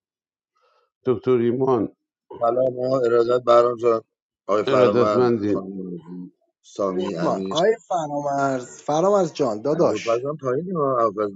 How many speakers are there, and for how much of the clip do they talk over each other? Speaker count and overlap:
3, about 18%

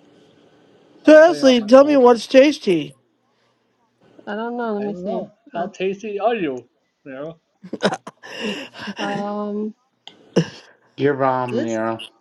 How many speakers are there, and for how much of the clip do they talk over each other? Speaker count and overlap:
4, about 13%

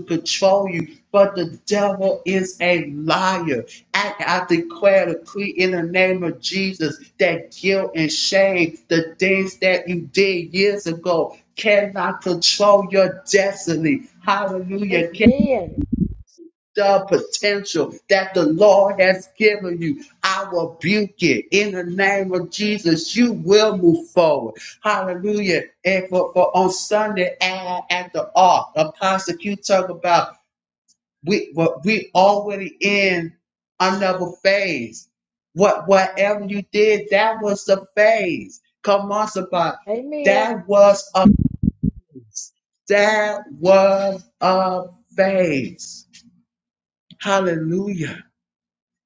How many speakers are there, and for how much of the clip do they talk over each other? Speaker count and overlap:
2, about 1%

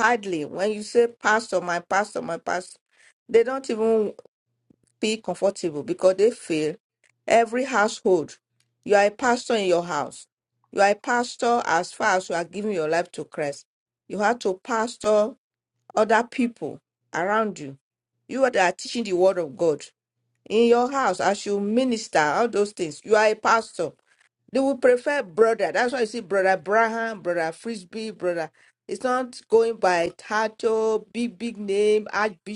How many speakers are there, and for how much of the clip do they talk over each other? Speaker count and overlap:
1, no overlap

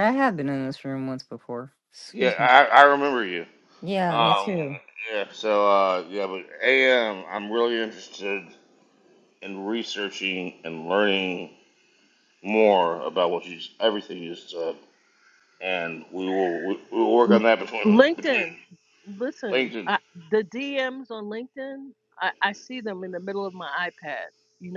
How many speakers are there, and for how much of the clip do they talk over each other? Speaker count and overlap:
3, about 8%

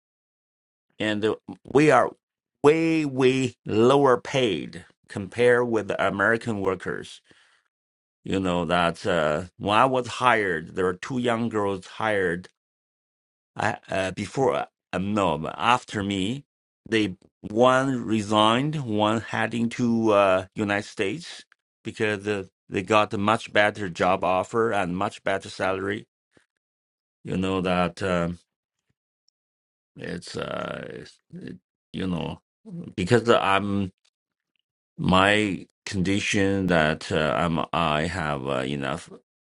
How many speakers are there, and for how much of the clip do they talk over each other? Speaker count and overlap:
1, no overlap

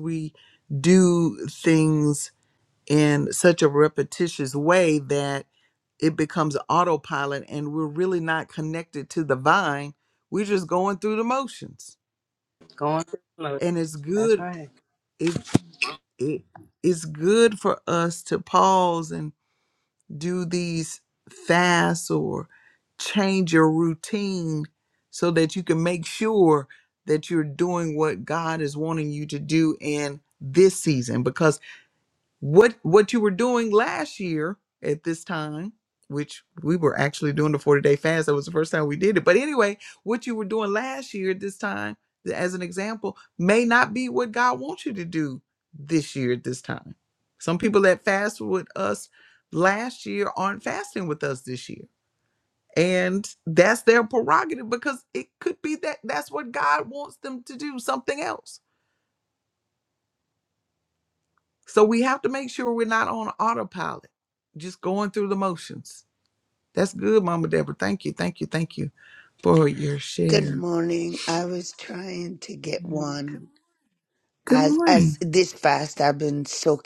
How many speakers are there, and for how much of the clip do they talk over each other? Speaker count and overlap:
3, about 2%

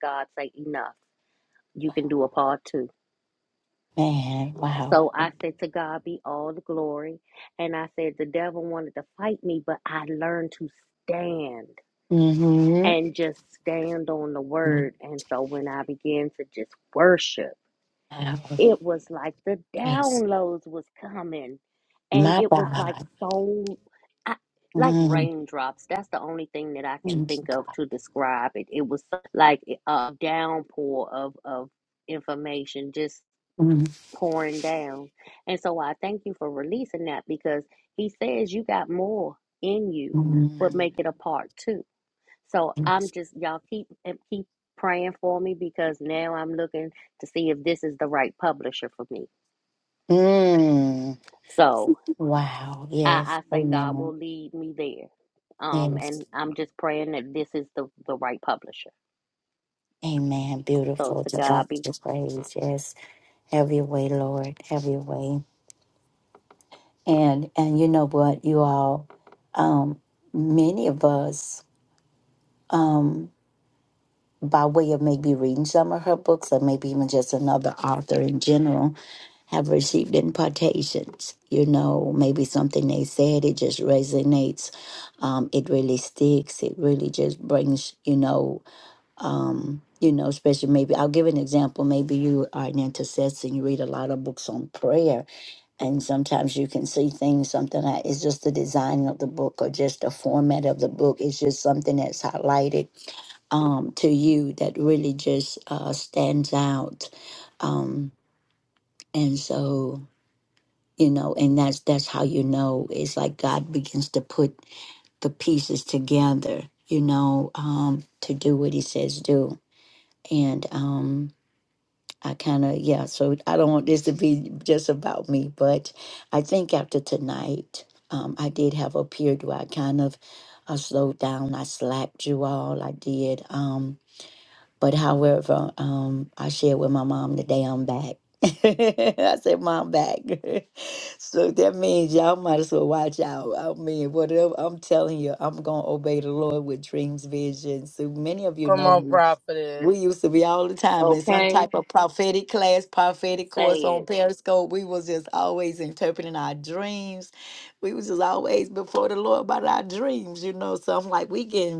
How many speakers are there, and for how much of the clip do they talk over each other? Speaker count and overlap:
3, about 5%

